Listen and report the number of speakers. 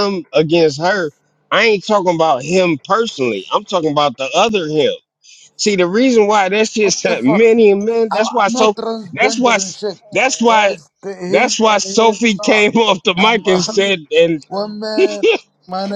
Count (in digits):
2